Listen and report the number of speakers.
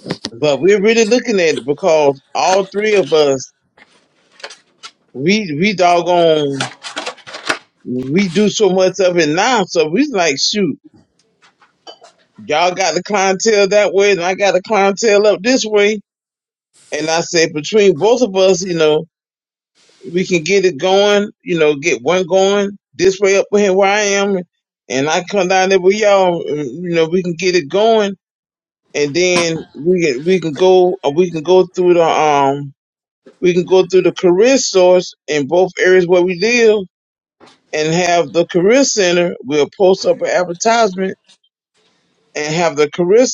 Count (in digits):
1